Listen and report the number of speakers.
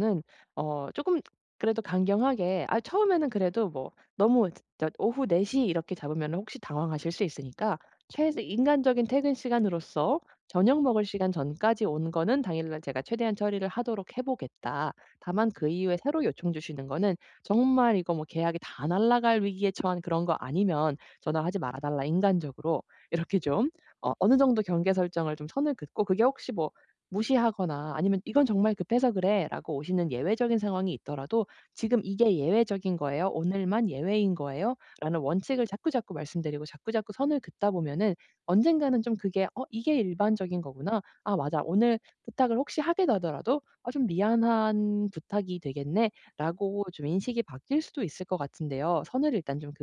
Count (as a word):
one